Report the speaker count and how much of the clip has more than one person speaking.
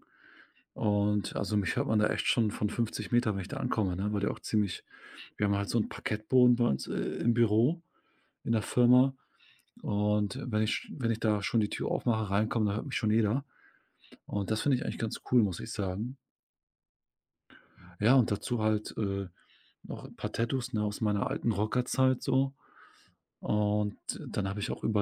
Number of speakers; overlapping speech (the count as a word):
one, no overlap